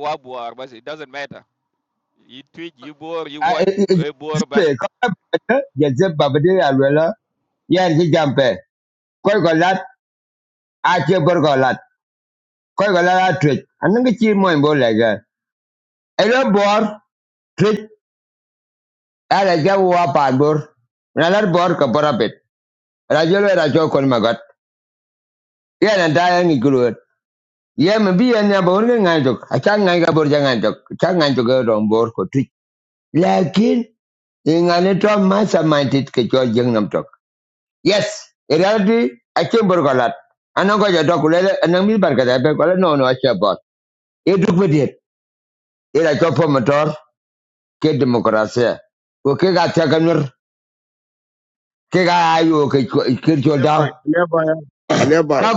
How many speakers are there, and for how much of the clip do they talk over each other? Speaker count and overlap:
three, about 2%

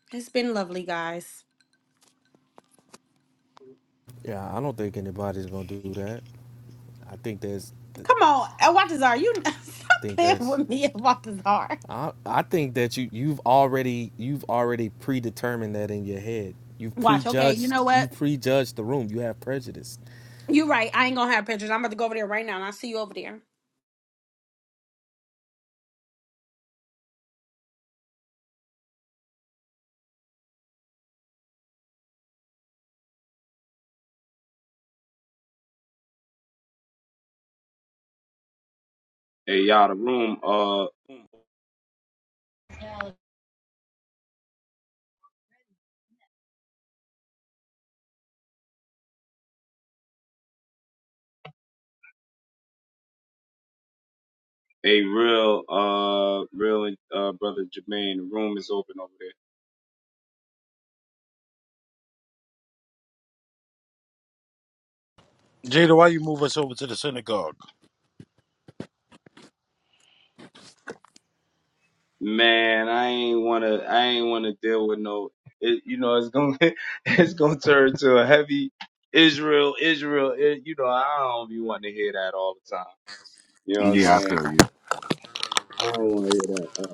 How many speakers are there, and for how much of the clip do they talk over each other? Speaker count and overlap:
four, about 2%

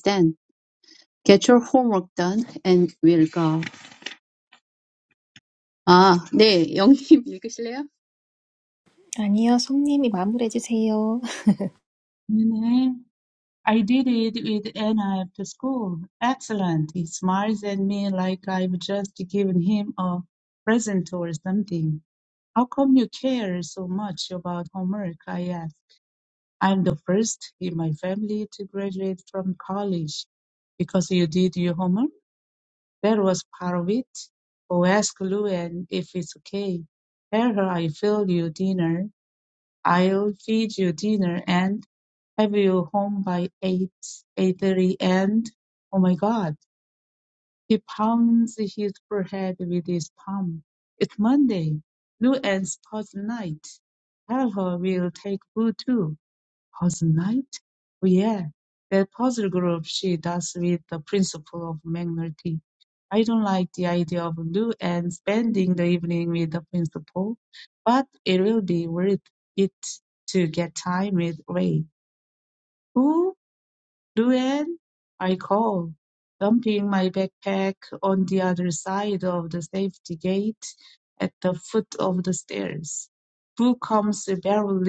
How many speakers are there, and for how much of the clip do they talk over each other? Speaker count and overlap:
three, no overlap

